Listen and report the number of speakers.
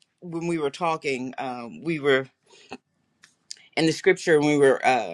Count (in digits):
1